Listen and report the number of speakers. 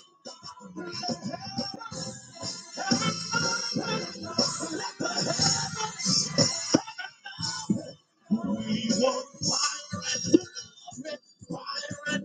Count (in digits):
0